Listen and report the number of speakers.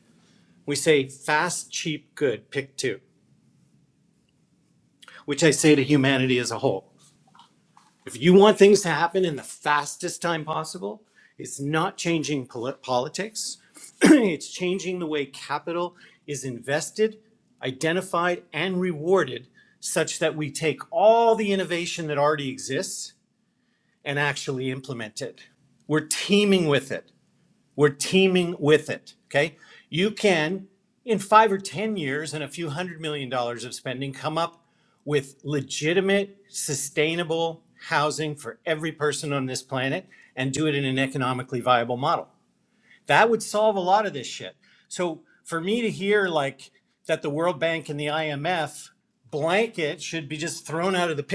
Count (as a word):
one